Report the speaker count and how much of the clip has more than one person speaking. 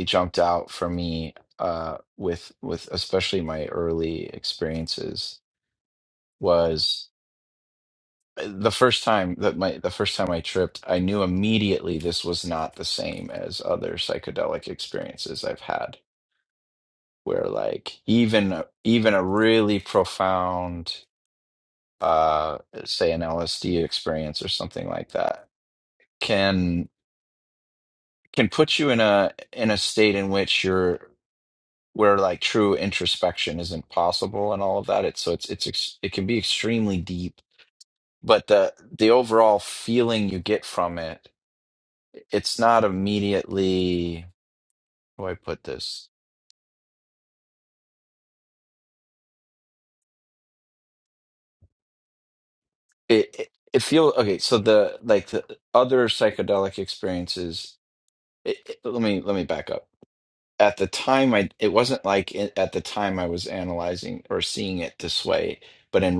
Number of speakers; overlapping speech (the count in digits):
1, no overlap